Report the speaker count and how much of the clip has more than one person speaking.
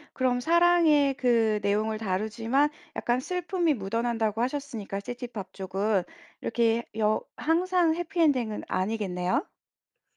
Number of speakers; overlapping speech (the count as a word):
one, no overlap